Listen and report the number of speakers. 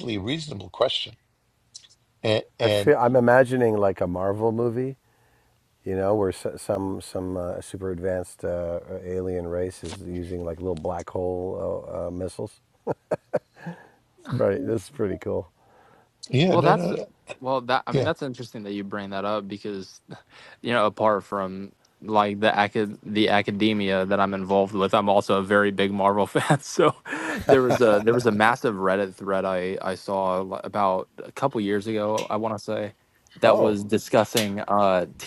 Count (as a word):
three